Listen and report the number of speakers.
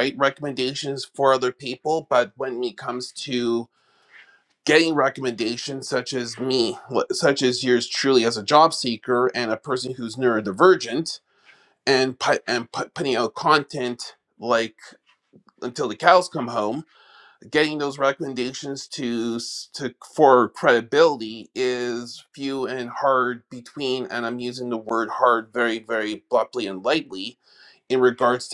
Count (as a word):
one